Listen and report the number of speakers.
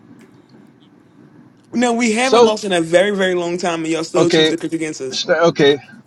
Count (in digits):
2